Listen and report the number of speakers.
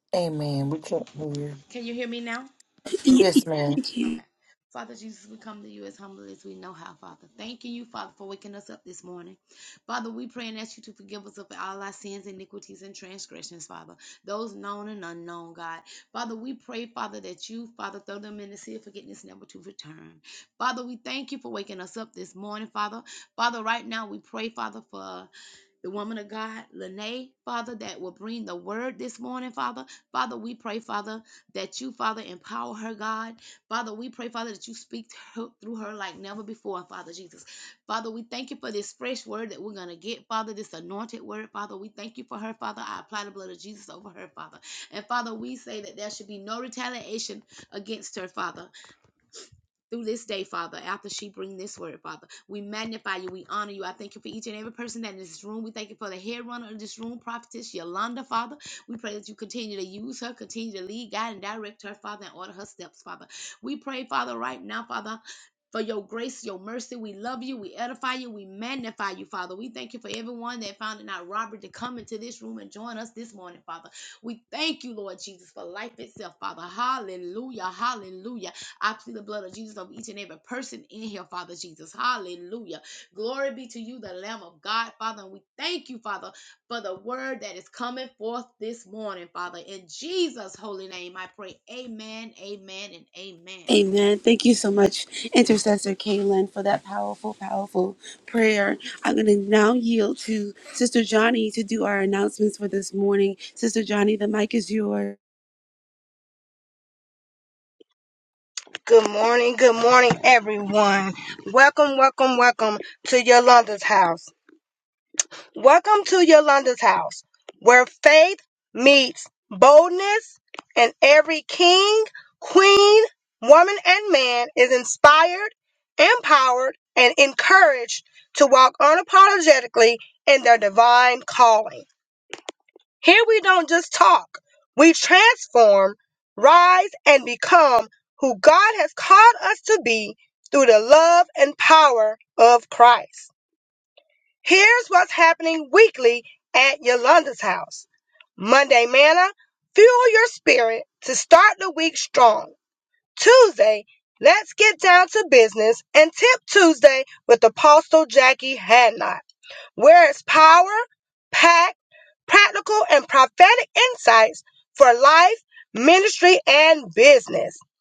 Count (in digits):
4